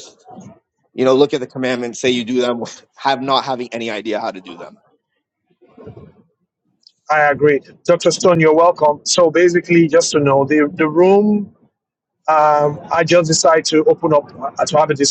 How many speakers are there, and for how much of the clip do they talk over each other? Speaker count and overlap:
2, no overlap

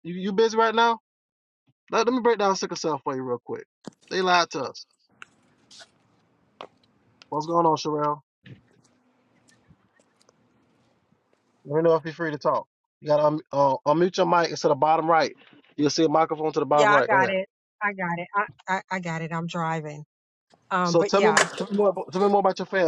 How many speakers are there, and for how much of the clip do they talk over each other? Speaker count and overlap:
2, about 5%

